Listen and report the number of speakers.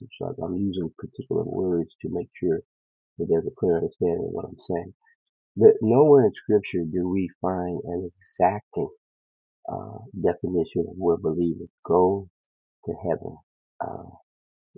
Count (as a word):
one